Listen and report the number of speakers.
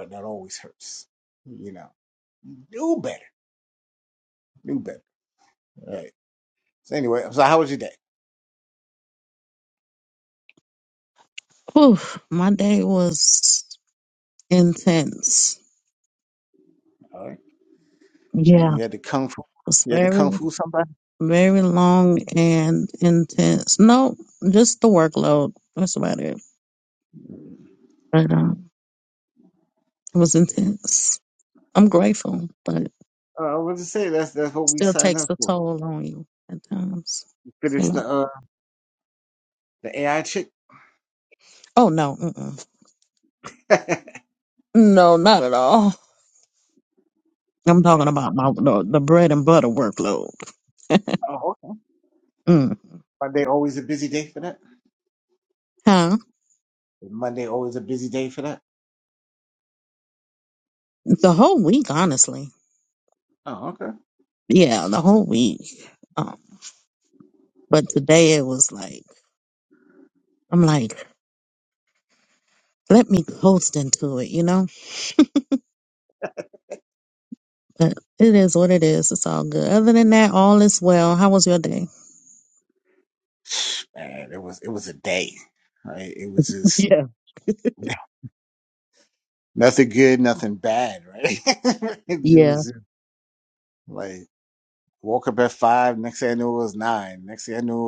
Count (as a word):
two